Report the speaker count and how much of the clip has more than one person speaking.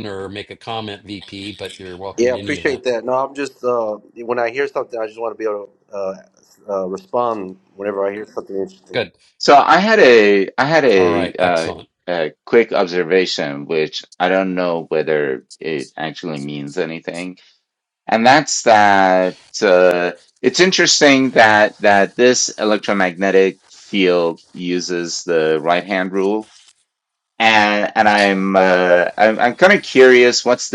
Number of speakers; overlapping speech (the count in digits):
3, about 5%